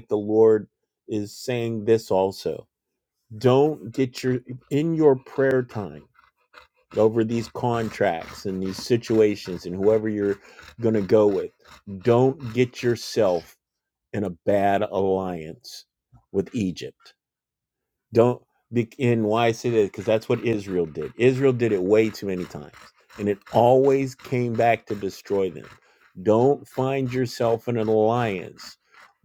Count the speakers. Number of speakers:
1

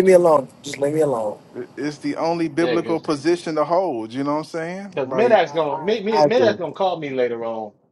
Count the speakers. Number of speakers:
3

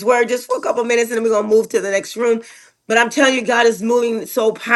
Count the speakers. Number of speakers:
1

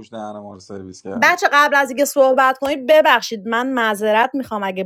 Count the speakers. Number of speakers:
2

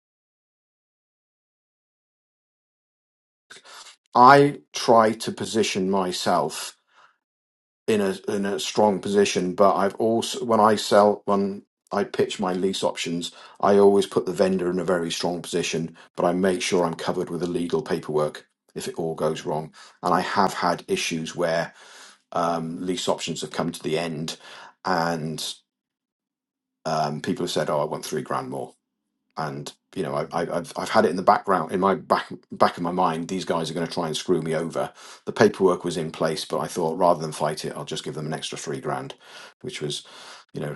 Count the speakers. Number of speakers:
1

